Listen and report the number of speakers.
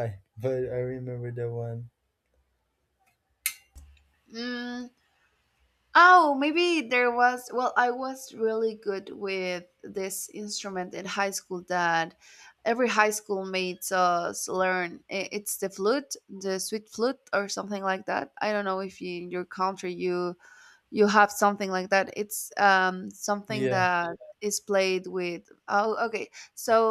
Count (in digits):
2